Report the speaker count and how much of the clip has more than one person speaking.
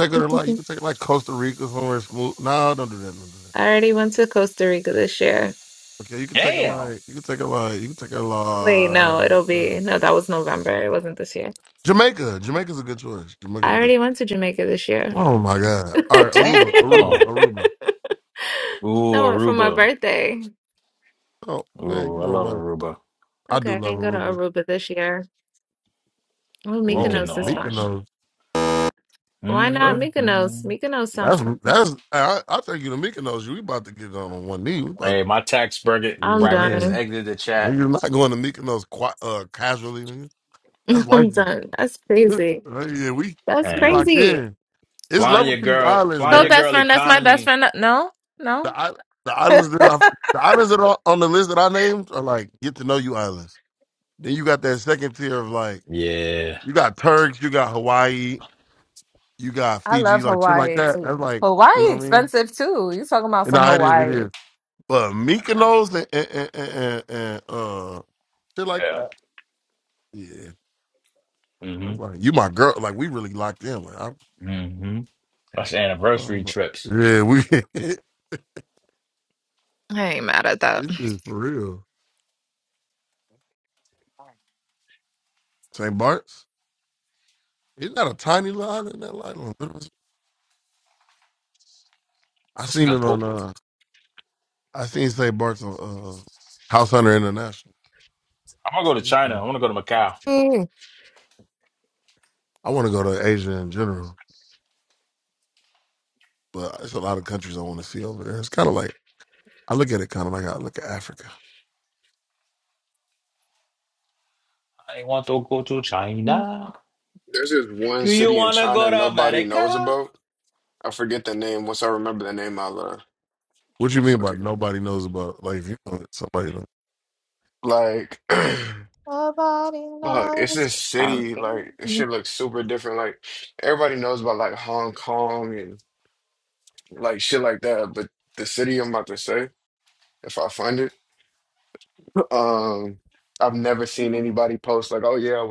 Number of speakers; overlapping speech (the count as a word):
four, about 14%